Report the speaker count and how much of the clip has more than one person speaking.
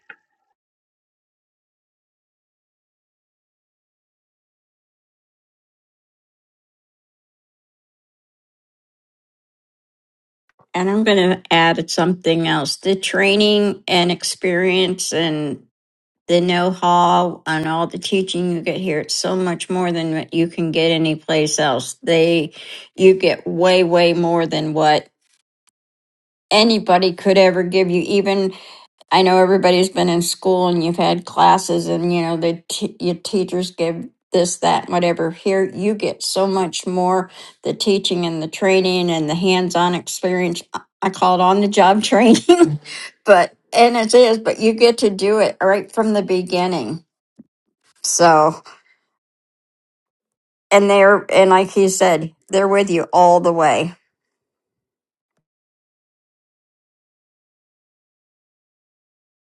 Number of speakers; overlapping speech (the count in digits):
1, no overlap